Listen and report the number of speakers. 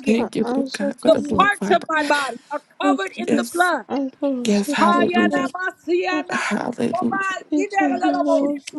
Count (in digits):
3